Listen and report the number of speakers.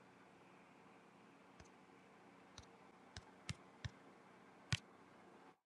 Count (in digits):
0